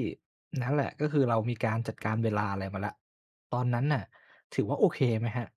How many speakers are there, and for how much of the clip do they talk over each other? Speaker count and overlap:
1, no overlap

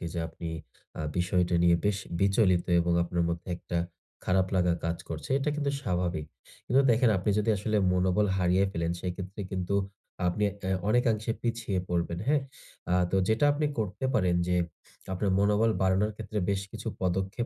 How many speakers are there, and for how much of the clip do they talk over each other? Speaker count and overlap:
1, no overlap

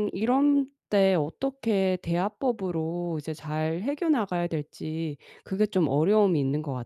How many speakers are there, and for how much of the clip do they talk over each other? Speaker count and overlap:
1, no overlap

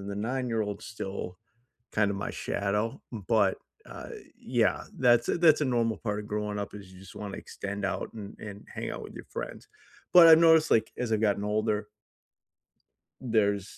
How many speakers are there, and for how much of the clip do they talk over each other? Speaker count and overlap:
1, no overlap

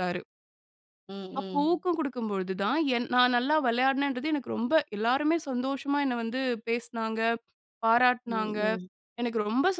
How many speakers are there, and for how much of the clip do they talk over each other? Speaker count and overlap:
2, about 7%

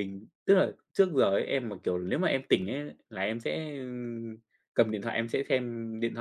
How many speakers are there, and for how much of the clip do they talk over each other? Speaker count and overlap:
1, no overlap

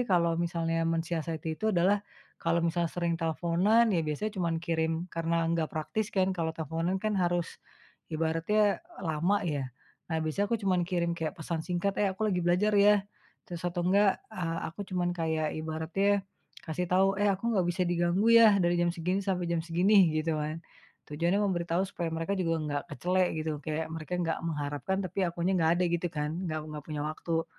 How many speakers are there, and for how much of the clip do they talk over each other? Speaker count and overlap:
1, no overlap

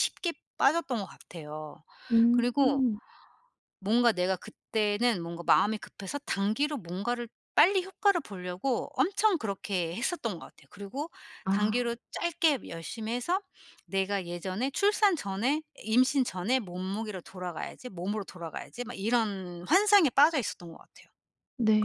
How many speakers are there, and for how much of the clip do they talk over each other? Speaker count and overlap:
2, about 4%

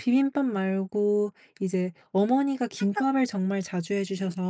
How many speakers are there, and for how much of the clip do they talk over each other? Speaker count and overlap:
1, no overlap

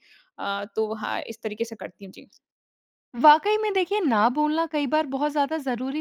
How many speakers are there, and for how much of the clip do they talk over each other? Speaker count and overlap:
2, no overlap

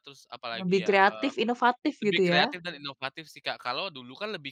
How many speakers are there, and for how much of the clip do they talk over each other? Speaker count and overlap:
2, about 27%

